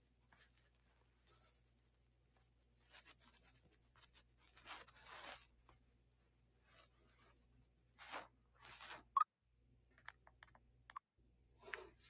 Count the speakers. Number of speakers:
0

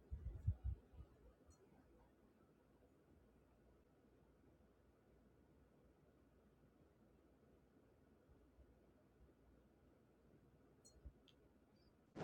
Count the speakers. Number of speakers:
0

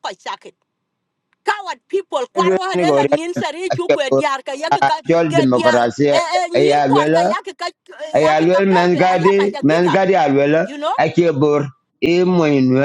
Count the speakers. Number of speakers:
2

